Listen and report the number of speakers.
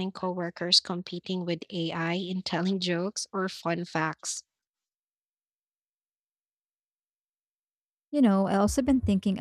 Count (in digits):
2